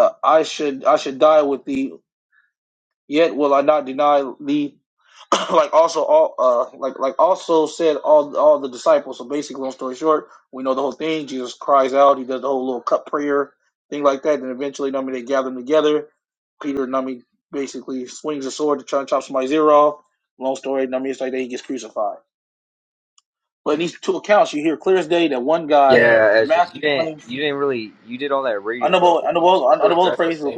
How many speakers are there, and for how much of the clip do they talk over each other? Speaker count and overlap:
two, about 8%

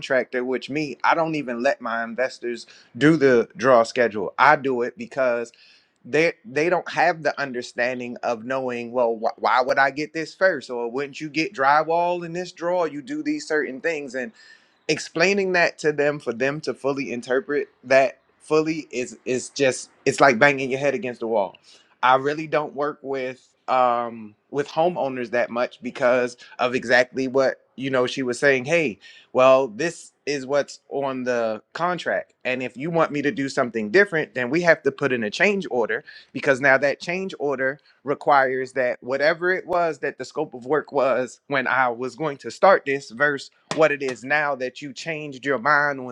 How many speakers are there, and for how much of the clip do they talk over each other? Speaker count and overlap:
one, no overlap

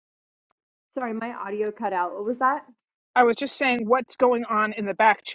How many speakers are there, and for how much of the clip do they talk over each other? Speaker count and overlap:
two, no overlap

